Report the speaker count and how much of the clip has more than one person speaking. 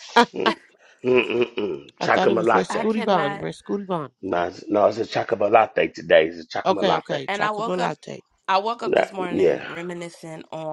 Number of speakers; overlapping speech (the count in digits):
3, about 31%